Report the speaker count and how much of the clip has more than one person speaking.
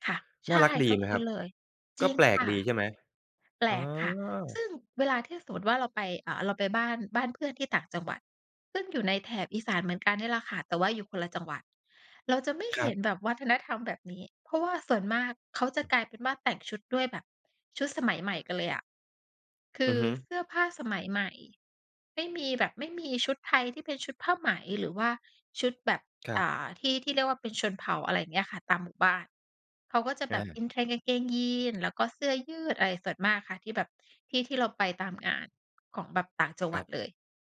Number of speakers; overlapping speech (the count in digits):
2, about 6%